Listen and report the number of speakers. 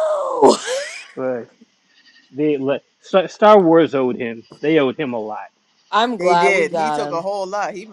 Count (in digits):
3